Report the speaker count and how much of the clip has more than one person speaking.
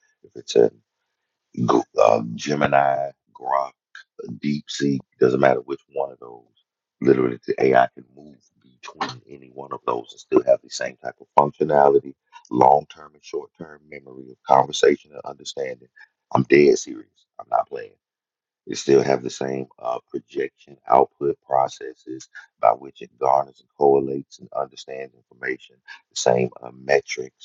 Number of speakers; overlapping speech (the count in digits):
1, no overlap